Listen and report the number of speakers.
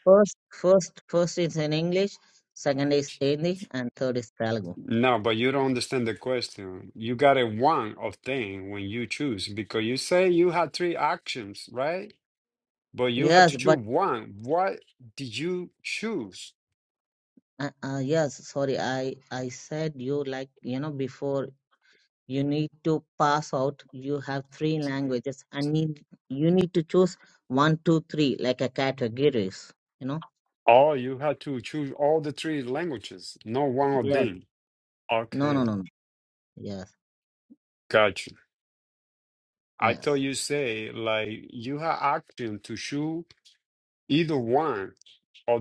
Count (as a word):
two